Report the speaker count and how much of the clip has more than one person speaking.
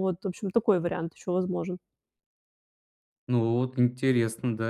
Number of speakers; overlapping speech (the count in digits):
2, no overlap